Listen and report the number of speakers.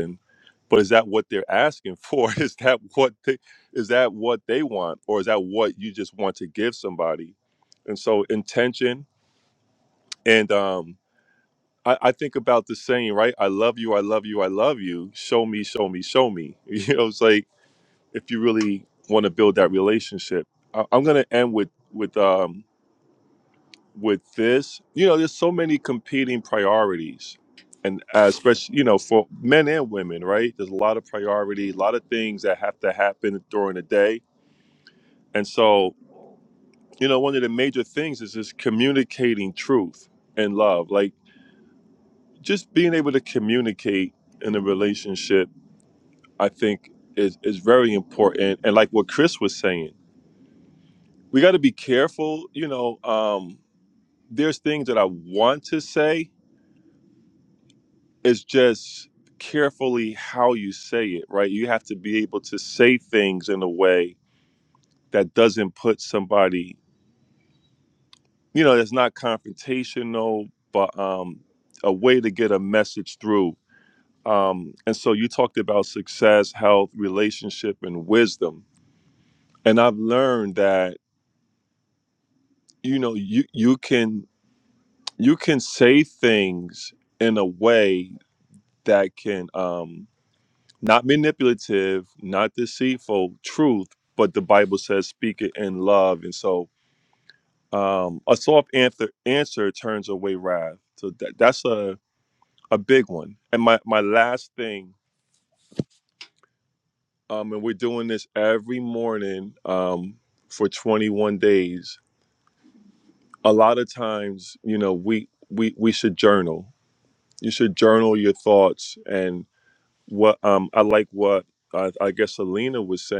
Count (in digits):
1